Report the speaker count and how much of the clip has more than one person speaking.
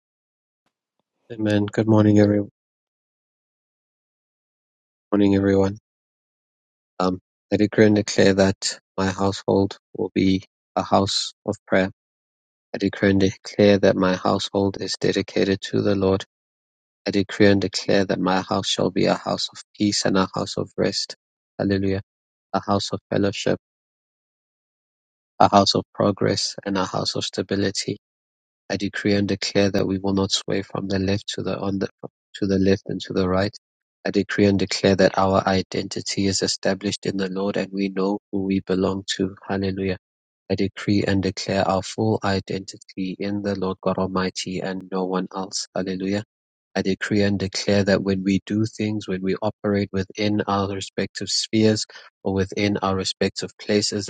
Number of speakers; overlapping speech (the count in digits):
1, no overlap